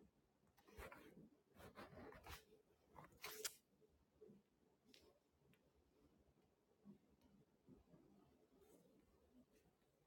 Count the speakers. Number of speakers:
0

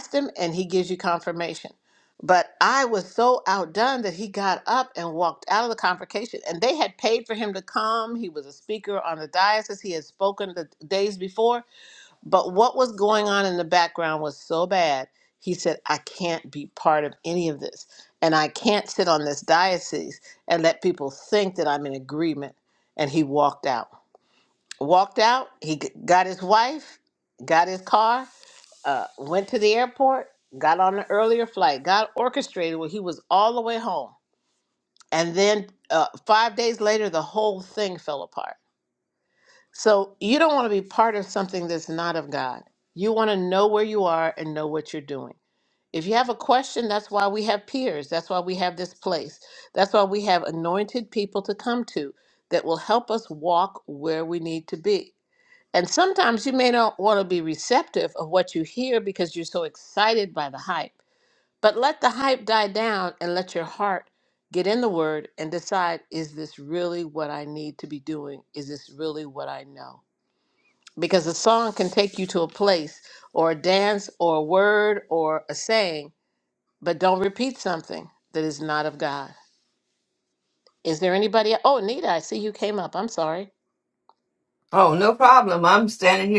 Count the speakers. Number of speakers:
2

